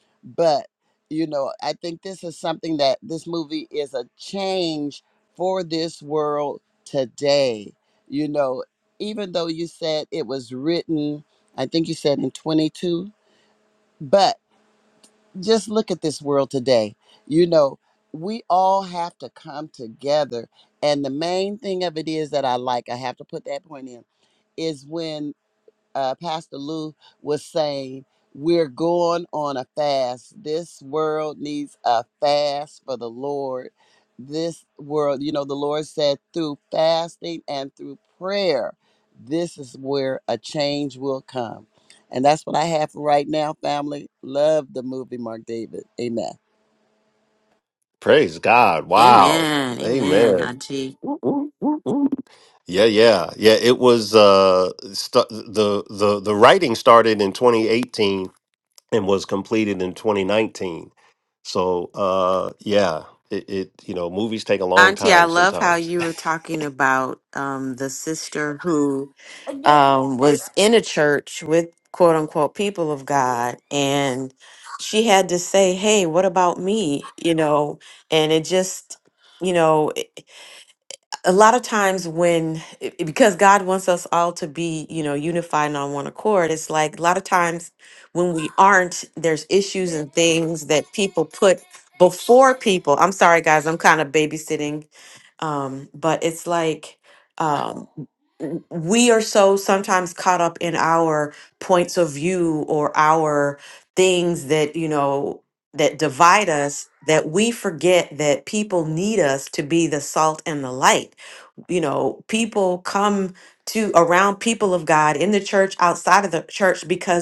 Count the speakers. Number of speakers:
three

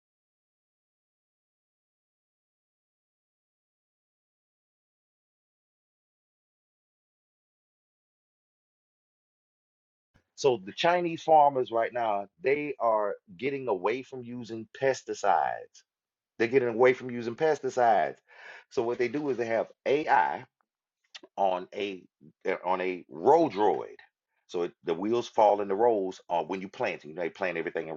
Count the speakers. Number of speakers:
one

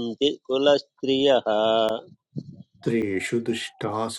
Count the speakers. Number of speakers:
two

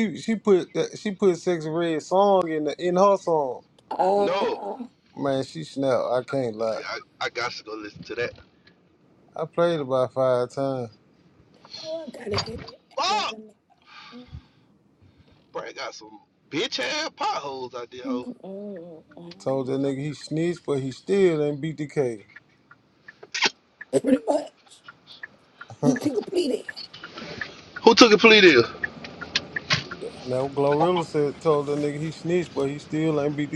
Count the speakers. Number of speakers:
three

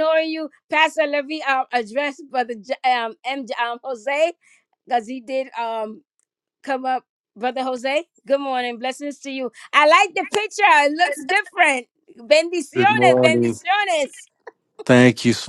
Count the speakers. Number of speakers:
two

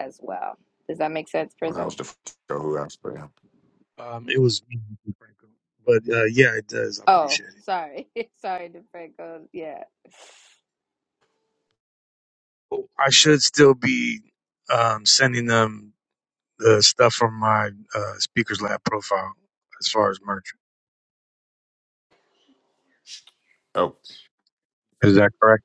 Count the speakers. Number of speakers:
three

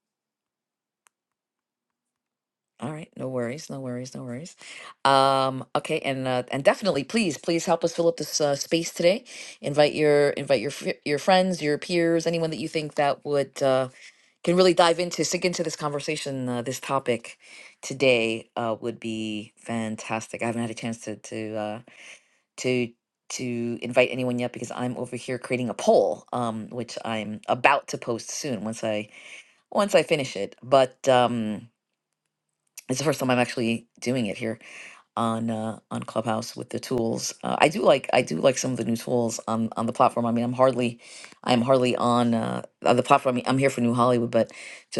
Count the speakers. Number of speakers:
one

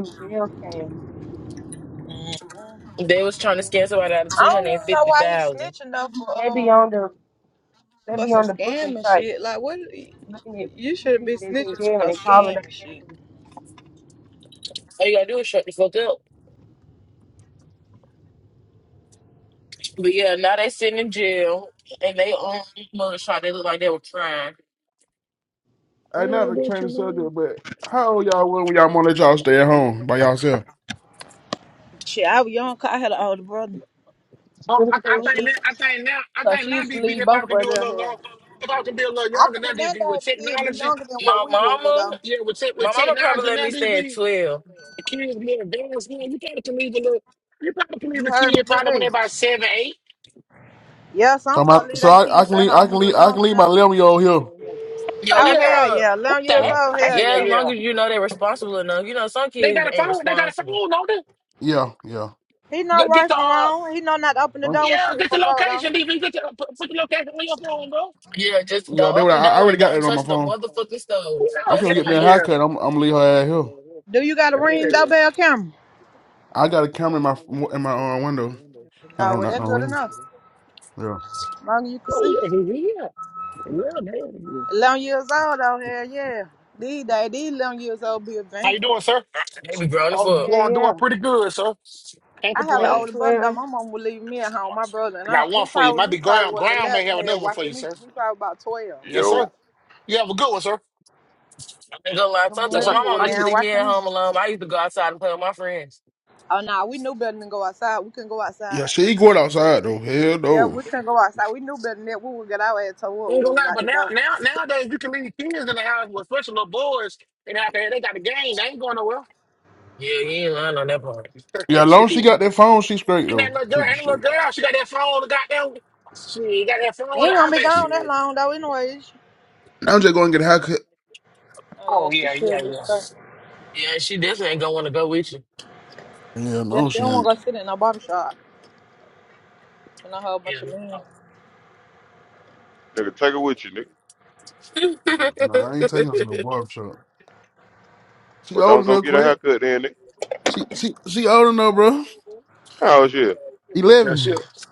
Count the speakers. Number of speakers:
six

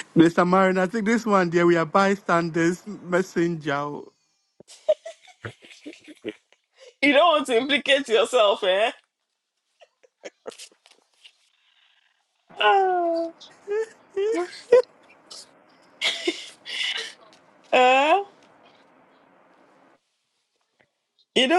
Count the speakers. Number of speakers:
two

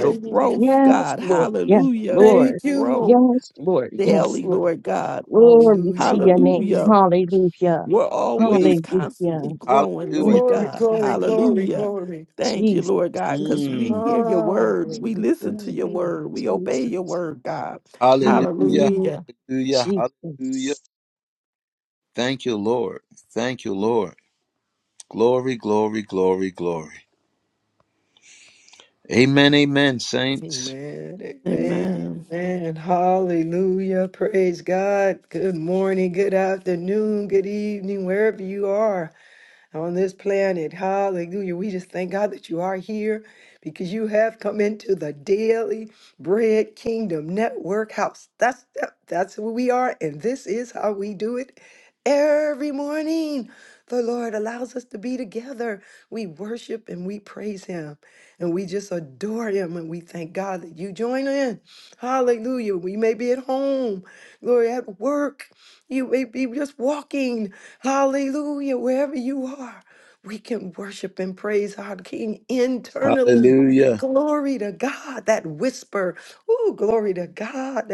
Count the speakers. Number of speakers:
four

